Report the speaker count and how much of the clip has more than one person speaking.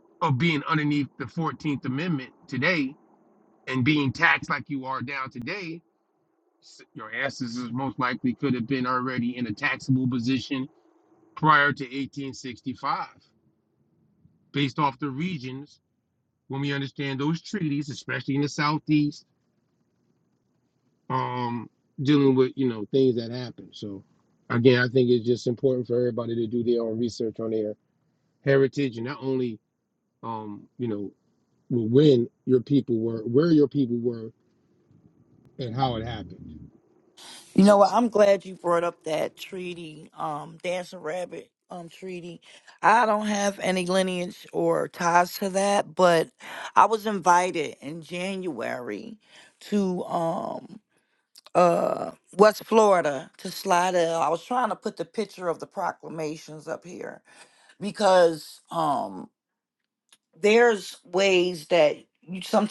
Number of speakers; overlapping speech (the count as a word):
two, under 1%